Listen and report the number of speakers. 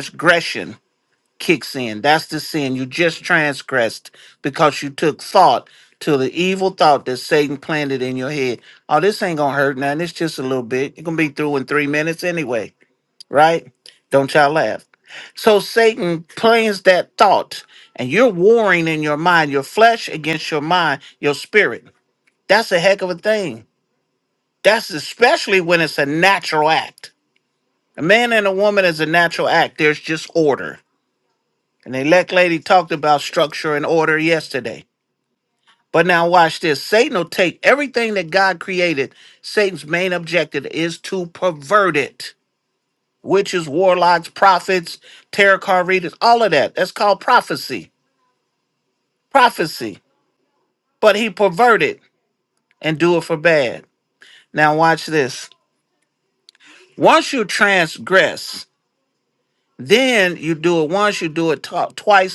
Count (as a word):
one